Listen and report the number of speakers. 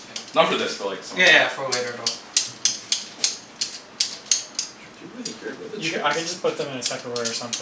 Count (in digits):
3